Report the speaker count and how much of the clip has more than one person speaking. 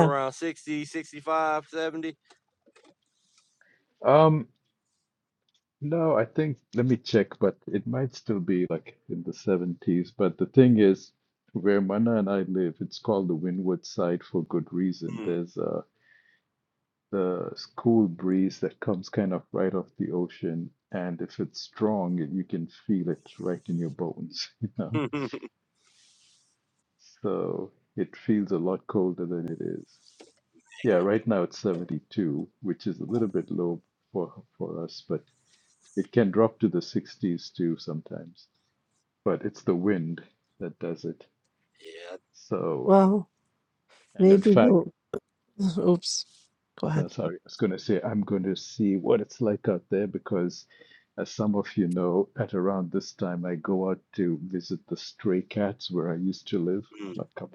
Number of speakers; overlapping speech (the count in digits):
3, about 2%